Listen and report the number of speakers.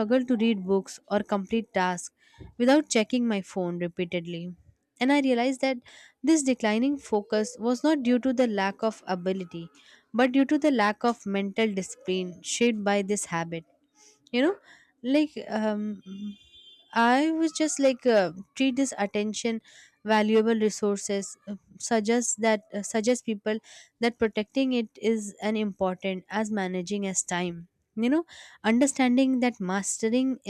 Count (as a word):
one